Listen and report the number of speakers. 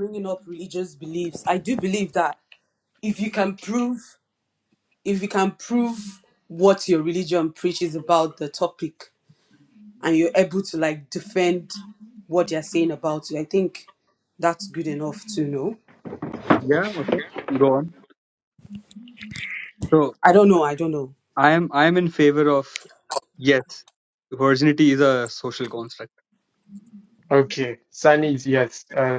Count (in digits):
3